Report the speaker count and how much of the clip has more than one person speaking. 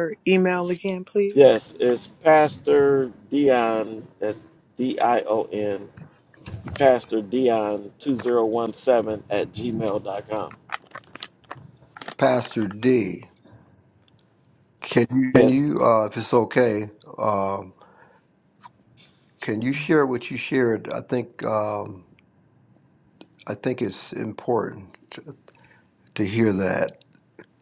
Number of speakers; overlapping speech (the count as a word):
three, about 1%